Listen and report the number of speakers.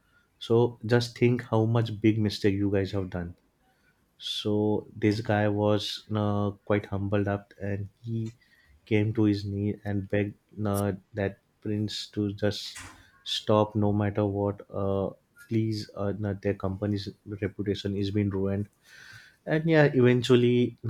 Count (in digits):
1